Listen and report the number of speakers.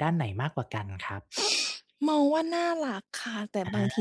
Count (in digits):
2